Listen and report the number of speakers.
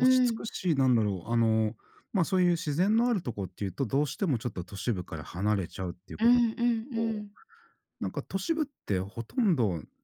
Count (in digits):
2